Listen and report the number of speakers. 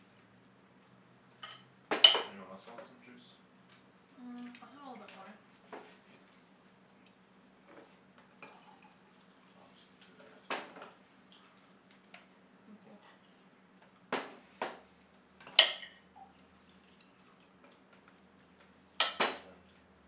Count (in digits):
3